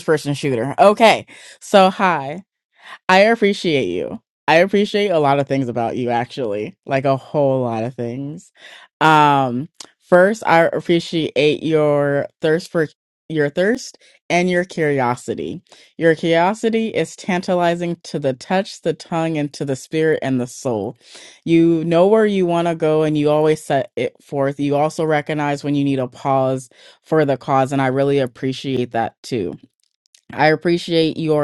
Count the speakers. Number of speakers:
1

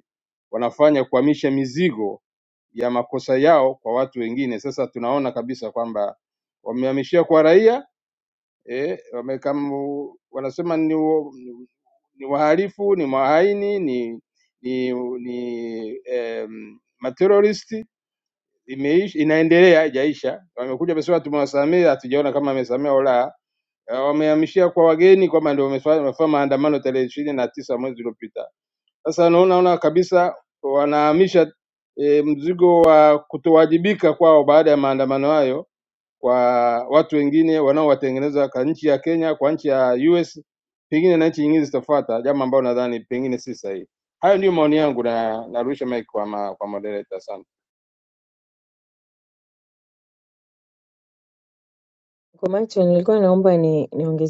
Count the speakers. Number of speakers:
2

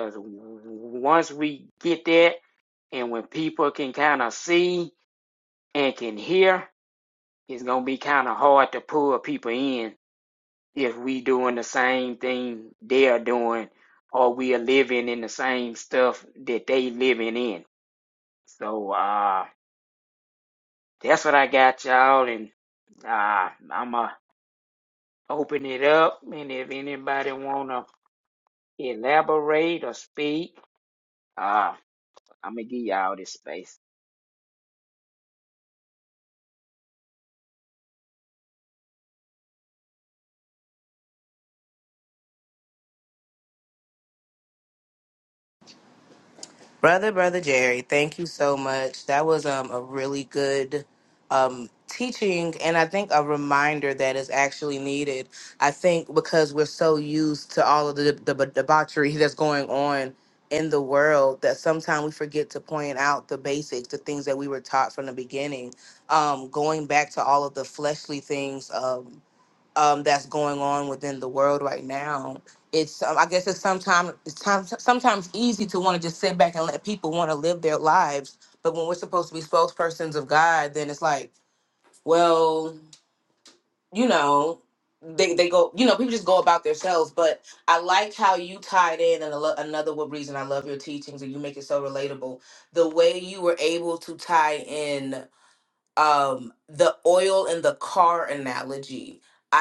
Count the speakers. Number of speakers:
2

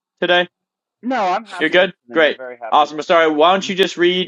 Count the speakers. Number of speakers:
2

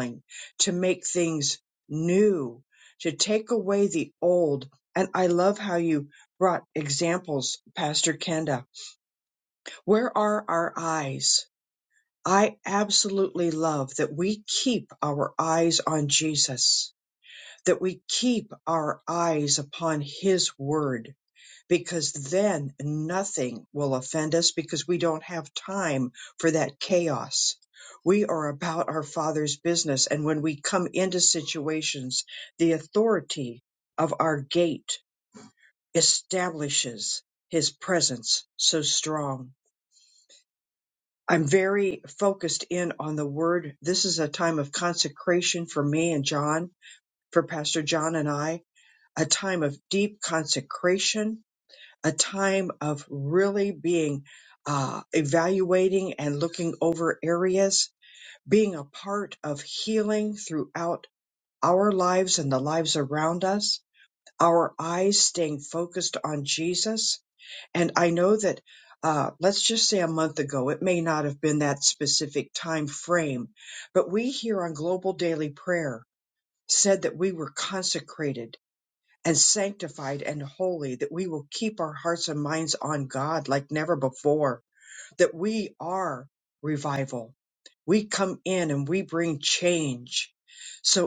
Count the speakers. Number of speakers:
1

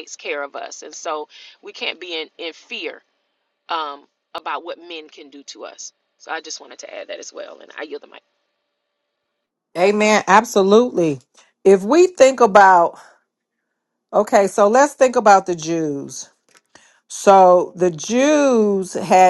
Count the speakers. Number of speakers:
2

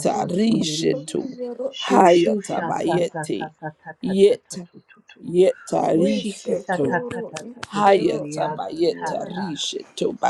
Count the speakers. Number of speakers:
3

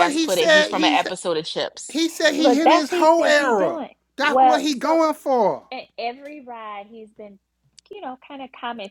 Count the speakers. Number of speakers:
3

